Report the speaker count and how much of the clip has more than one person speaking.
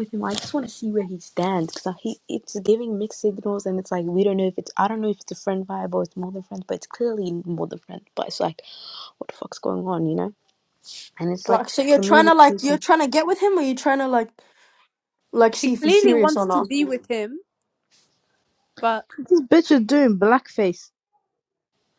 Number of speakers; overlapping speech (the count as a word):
four, about 11%